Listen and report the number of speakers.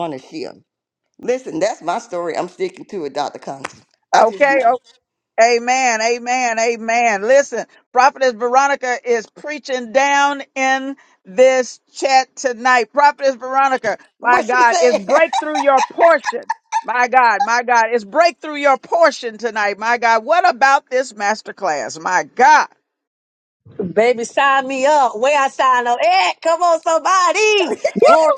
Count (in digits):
3